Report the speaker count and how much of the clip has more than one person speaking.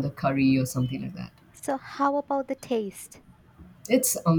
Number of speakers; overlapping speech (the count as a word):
two, no overlap